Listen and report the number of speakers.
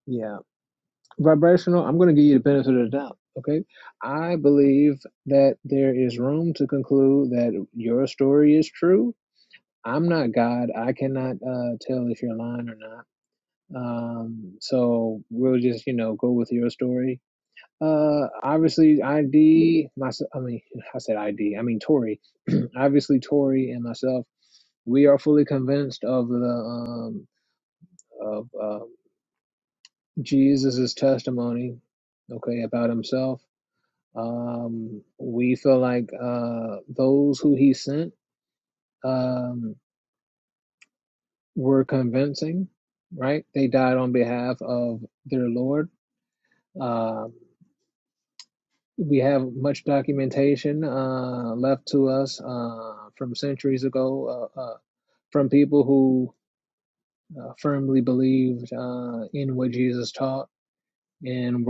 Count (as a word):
one